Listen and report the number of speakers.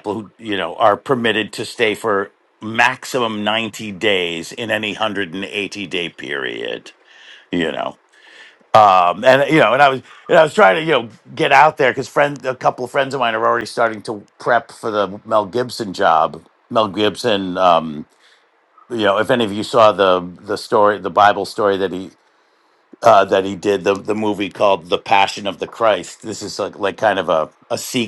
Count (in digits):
1